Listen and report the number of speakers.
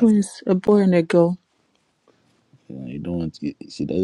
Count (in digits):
2